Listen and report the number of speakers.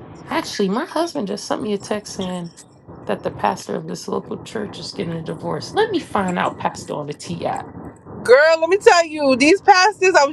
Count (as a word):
two